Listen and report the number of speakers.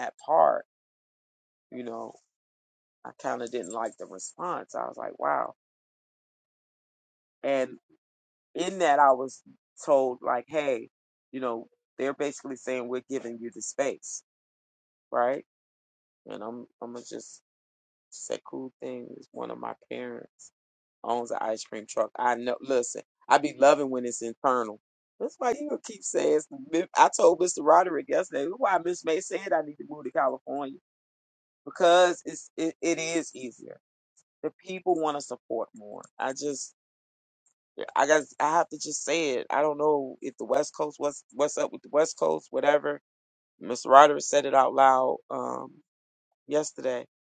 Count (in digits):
1